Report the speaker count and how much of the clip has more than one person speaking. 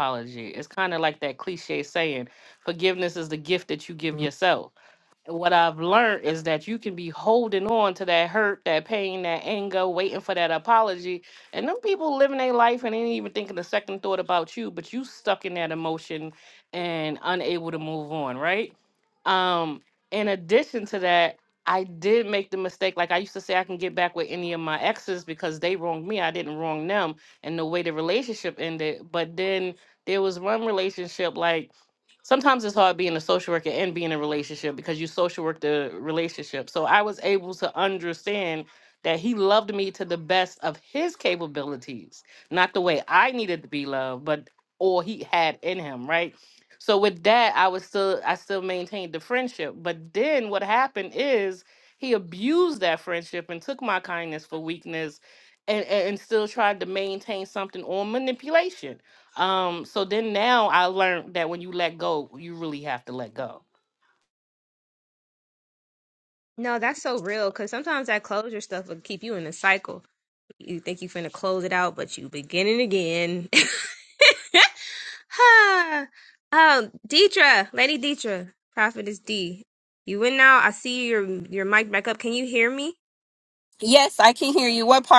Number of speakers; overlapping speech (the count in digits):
3, no overlap